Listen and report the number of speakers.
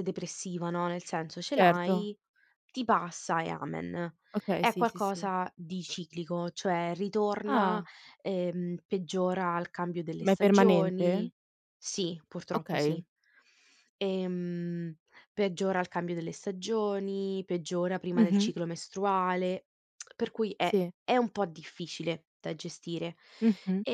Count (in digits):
2